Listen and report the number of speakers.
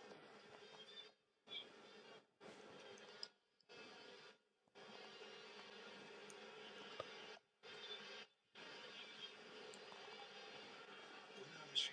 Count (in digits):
0